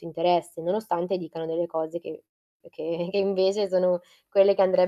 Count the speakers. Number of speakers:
1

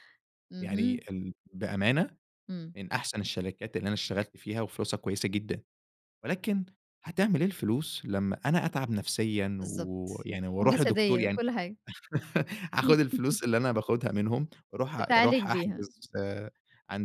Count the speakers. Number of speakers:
2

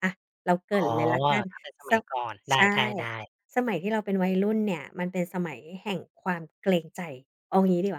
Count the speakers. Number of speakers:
2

